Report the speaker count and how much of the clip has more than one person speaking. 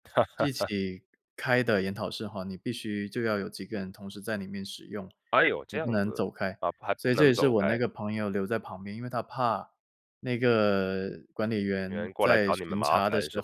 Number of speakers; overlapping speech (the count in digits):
2, about 21%